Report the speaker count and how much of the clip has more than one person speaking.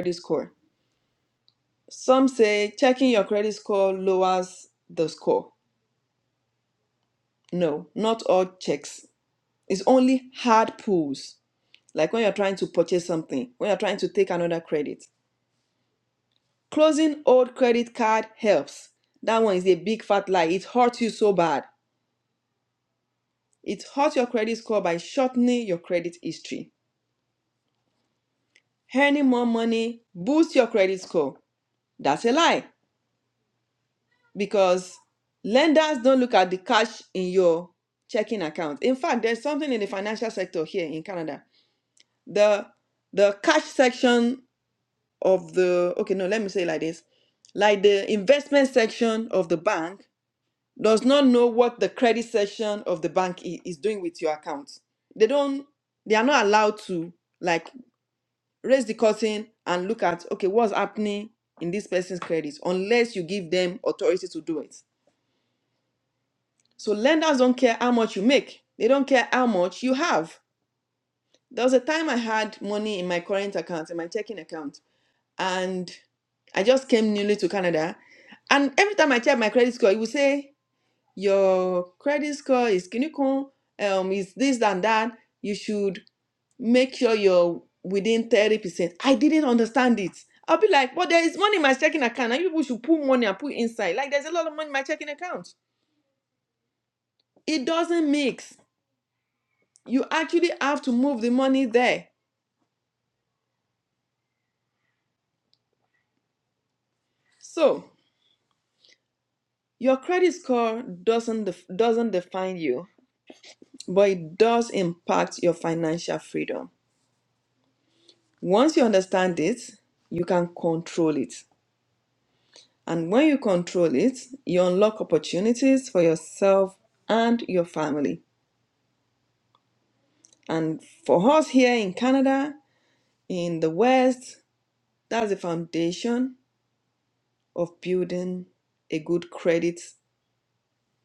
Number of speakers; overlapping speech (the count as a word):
one, no overlap